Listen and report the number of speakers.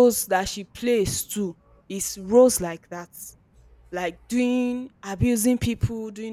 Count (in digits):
1